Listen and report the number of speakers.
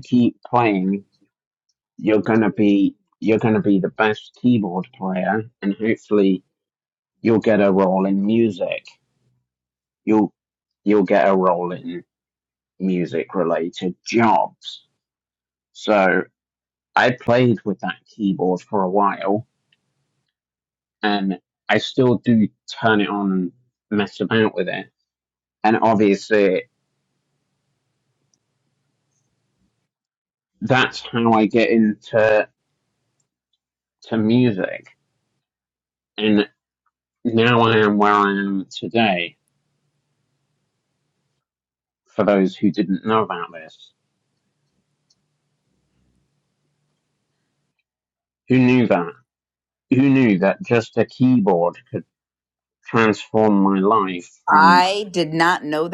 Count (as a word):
two